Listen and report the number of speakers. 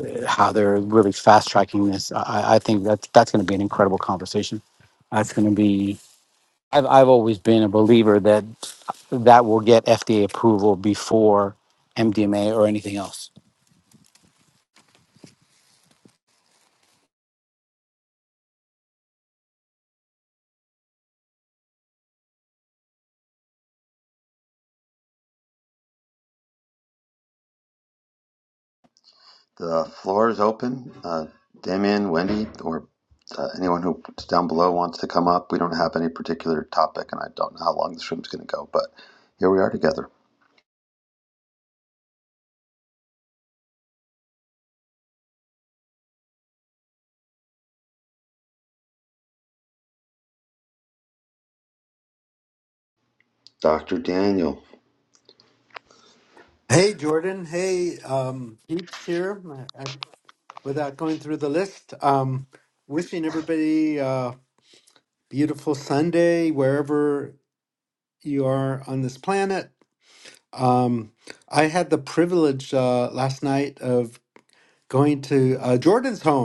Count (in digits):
3